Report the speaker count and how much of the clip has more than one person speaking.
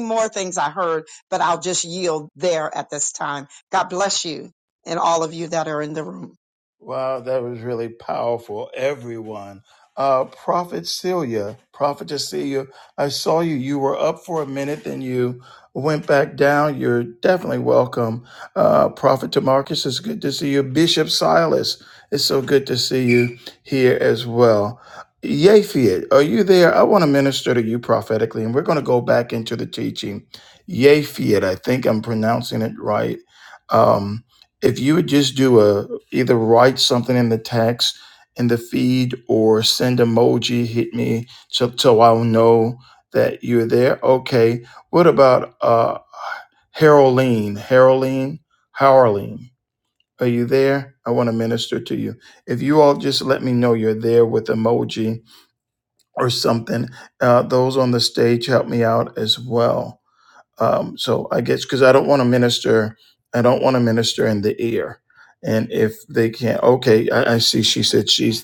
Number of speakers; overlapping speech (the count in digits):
2, no overlap